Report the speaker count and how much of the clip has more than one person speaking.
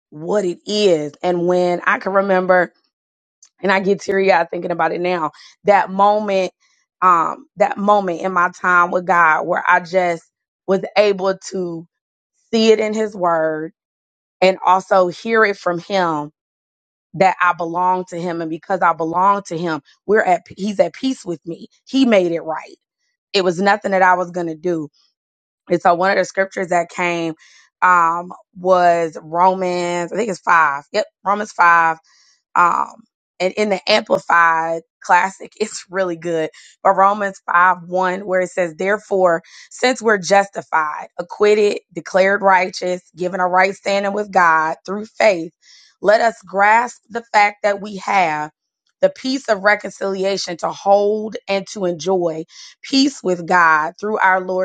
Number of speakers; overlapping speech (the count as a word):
one, no overlap